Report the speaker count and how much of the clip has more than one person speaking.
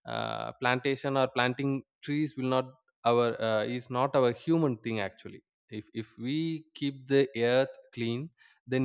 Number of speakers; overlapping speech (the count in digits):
1, no overlap